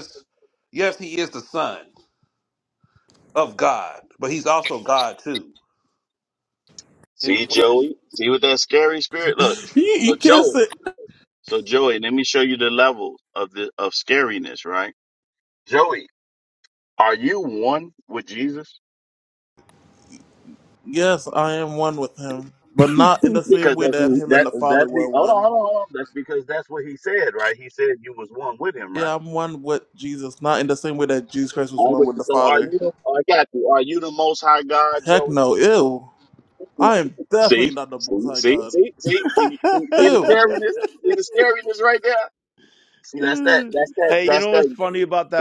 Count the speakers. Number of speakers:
4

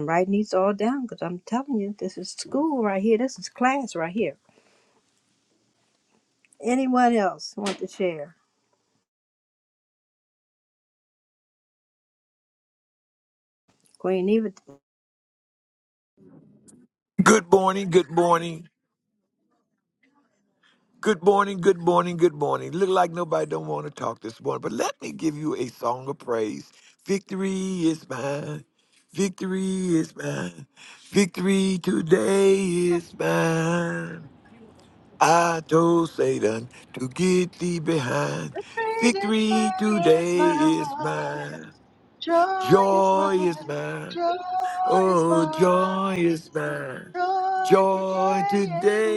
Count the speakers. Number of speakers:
3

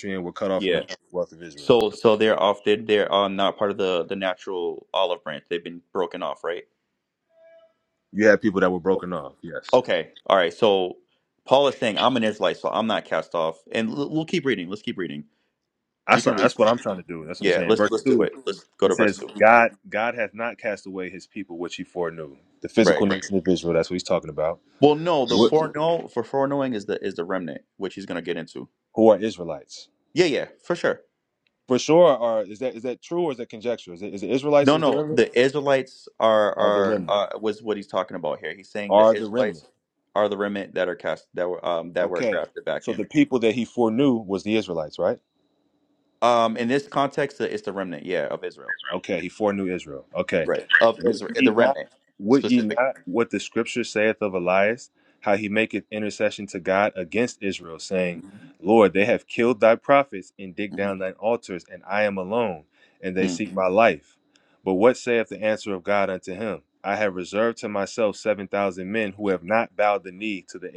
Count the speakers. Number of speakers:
2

